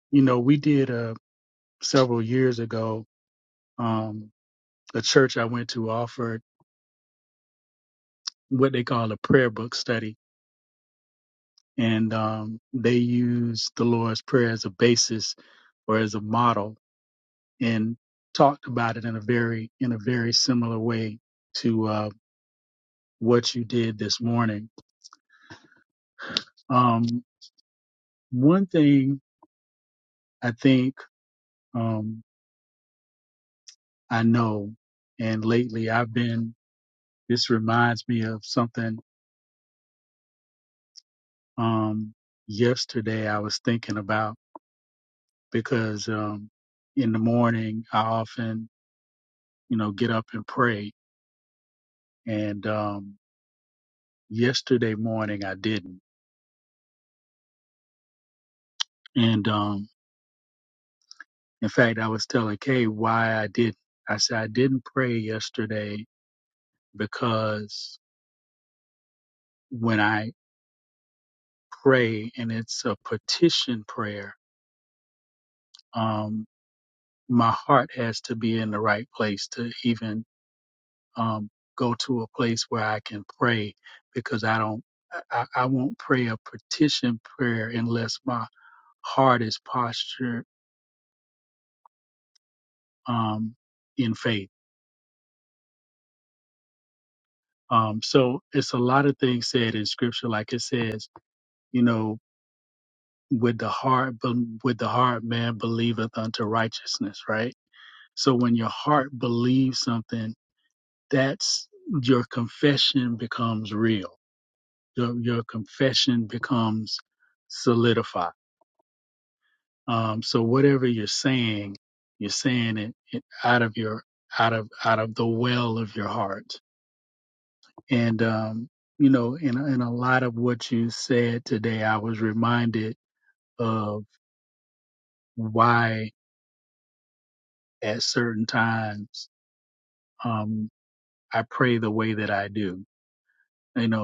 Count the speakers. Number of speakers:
one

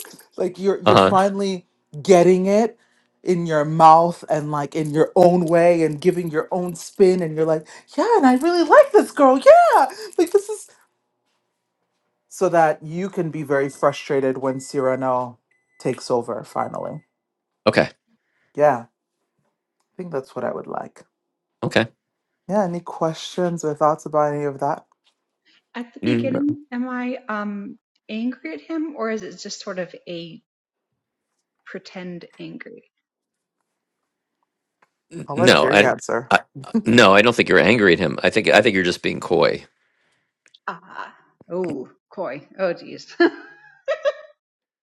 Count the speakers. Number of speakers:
three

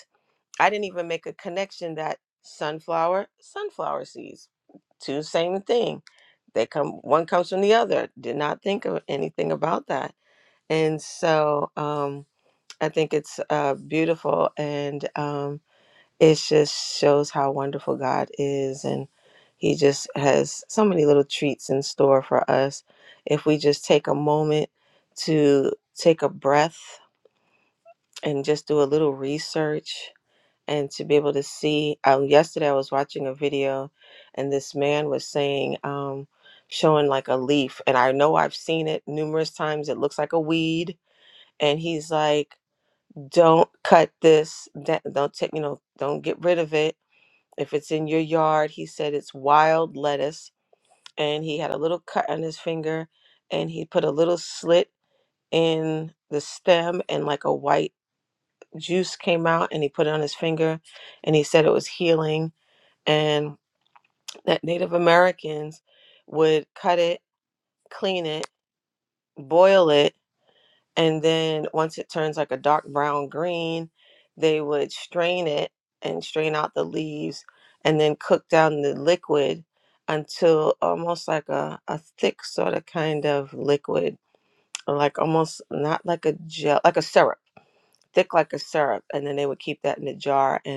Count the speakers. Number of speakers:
one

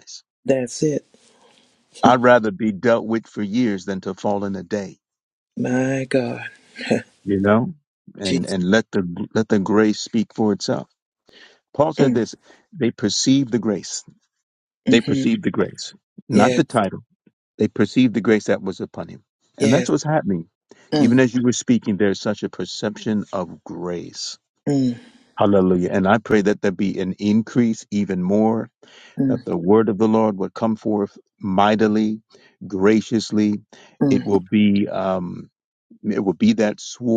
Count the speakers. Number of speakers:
two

